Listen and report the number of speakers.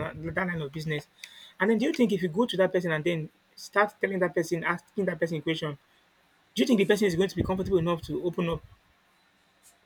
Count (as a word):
one